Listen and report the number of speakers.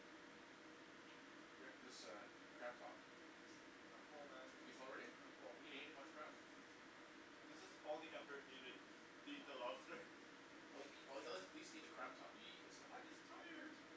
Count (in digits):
2